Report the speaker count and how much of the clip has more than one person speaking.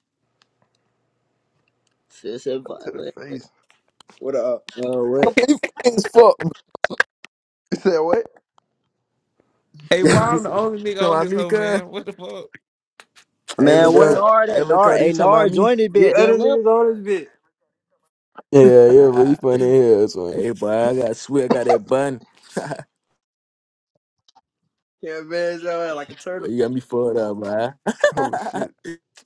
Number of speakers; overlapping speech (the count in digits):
6, about 14%